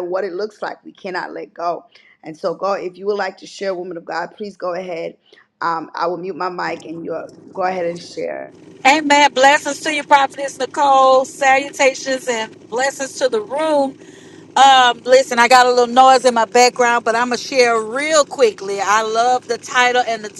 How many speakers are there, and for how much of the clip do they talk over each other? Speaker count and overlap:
2, no overlap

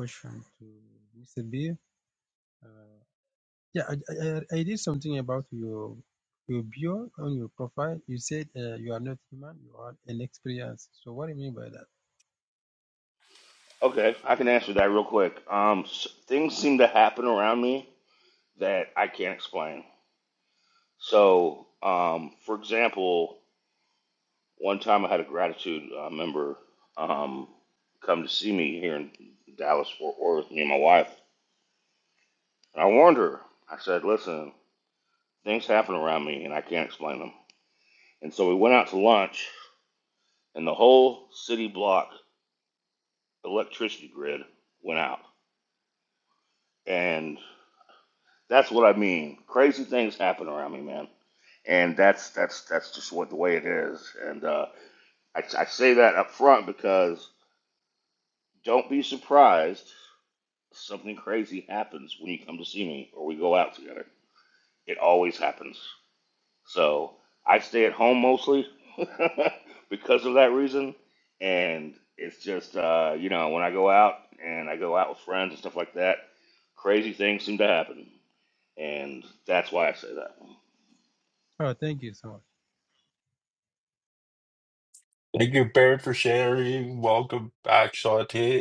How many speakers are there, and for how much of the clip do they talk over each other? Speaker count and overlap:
3, no overlap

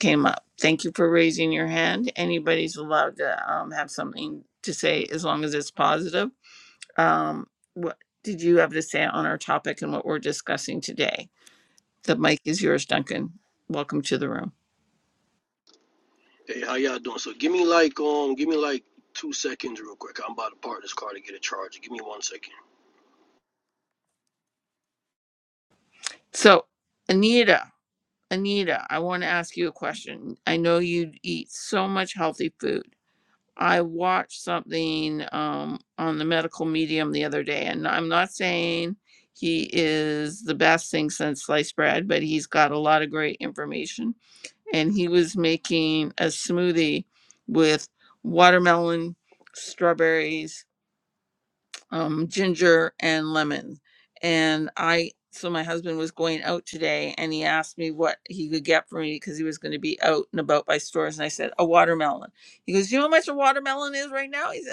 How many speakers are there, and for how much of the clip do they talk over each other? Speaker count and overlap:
2, no overlap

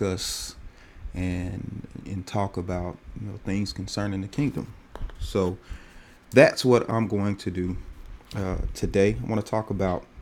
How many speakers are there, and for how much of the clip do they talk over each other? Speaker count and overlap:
1, no overlap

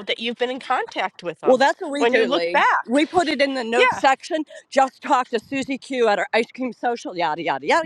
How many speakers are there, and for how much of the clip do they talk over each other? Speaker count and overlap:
2, about 19%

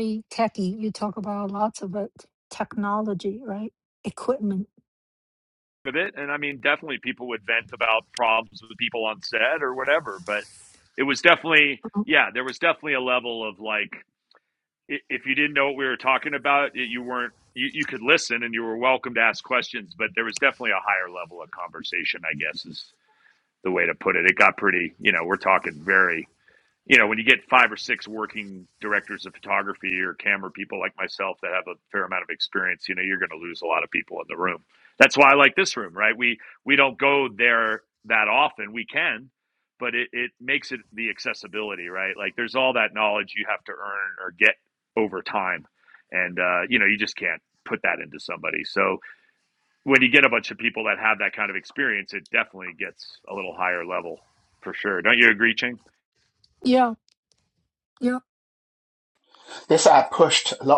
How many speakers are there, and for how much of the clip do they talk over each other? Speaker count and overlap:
3, under 1%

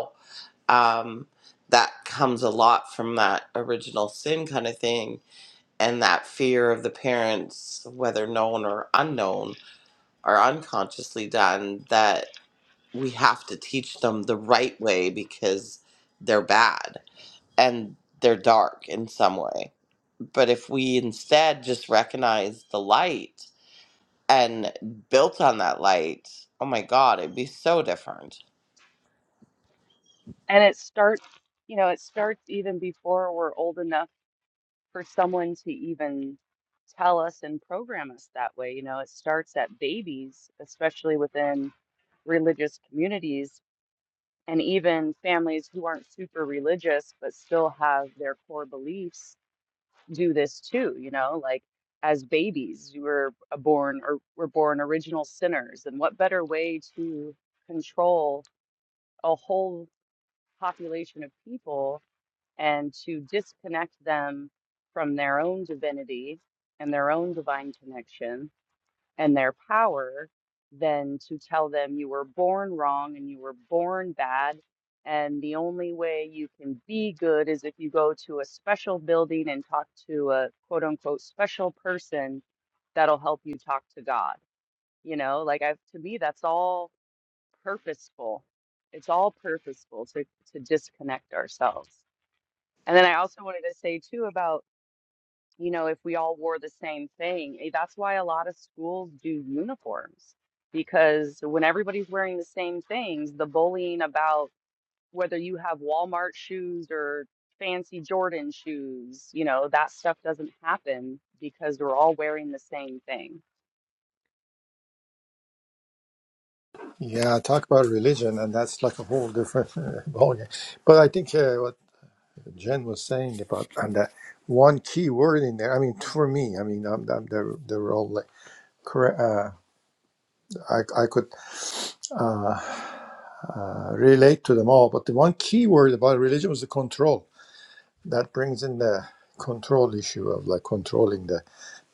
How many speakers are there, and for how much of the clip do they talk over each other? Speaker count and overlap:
3, no overlap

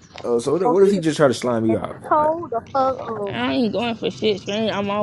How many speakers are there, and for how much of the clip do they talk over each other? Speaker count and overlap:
3, about 23%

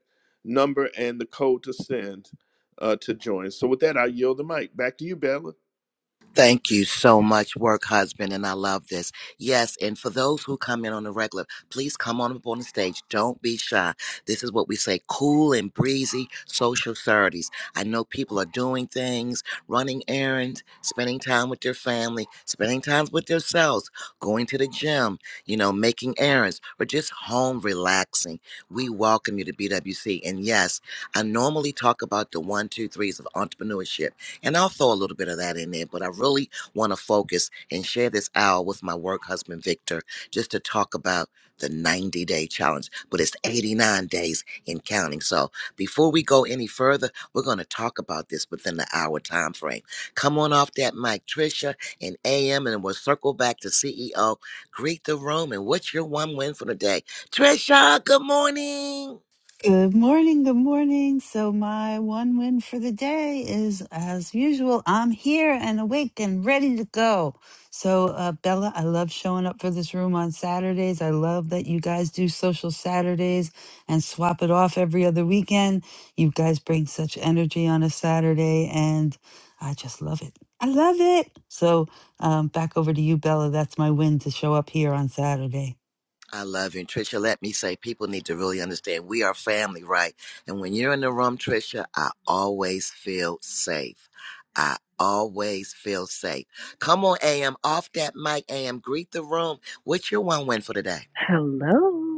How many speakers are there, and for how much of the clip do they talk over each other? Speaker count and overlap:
4, no overlap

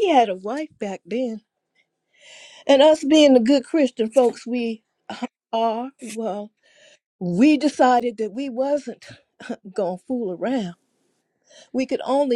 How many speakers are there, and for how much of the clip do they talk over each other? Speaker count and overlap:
1, no overlap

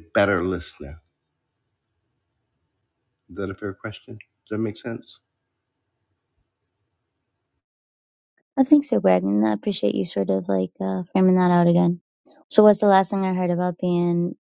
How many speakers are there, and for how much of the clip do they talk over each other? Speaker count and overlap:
2, no overlap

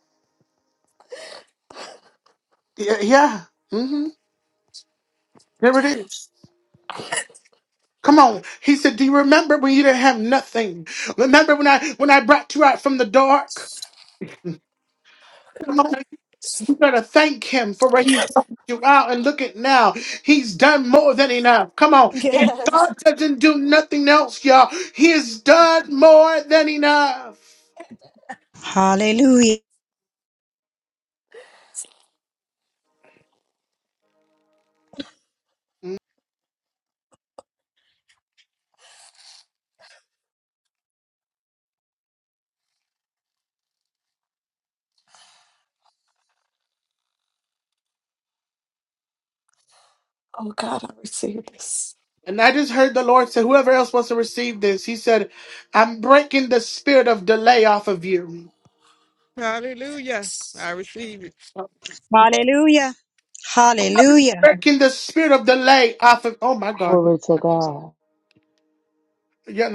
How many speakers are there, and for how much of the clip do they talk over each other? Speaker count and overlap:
5, about 2%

